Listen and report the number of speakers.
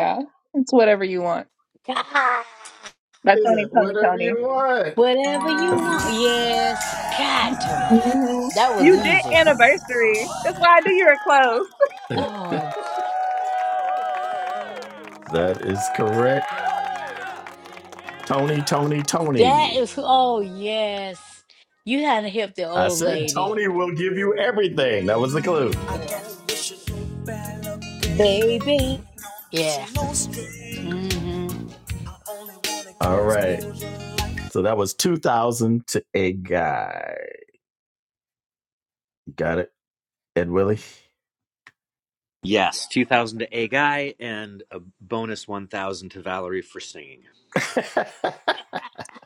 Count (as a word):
four